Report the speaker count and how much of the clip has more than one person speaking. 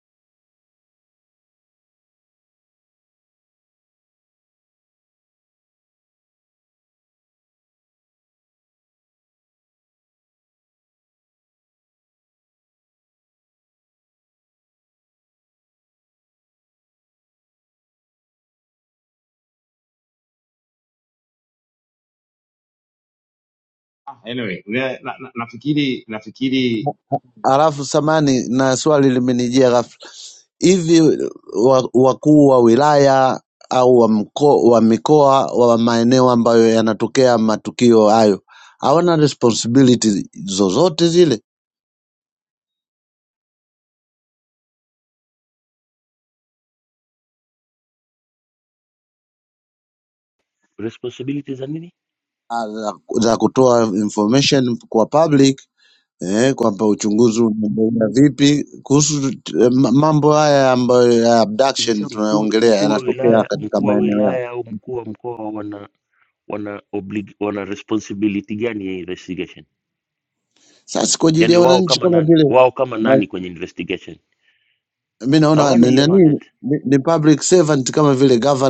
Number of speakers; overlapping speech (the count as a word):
three, about 6%